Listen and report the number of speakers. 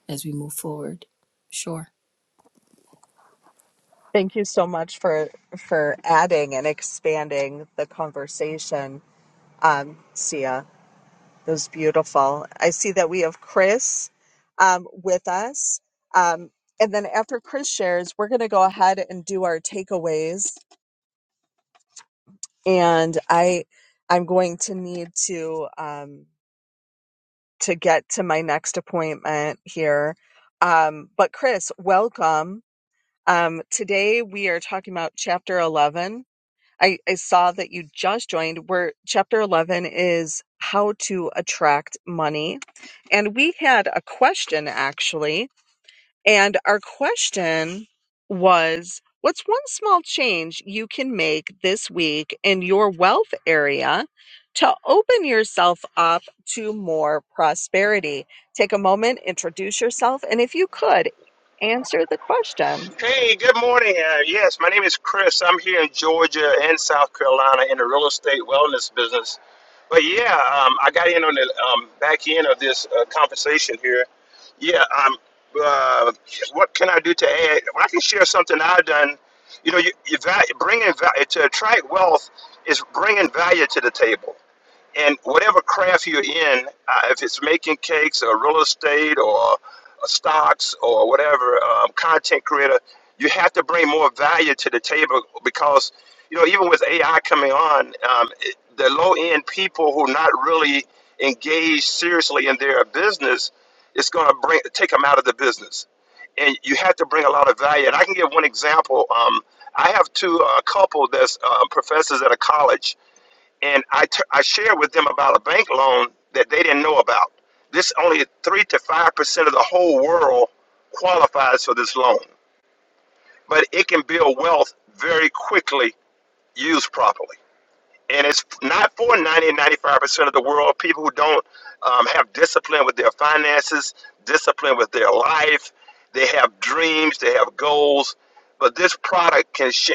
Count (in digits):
3